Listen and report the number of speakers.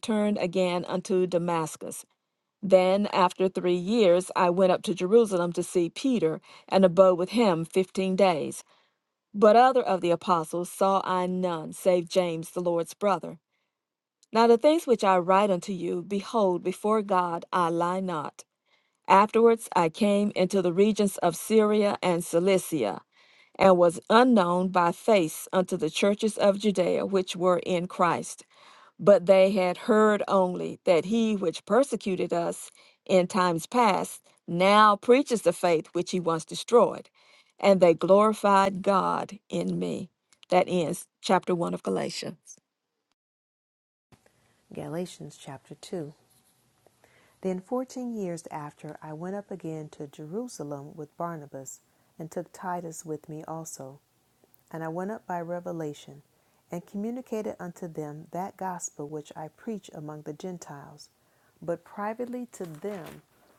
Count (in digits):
2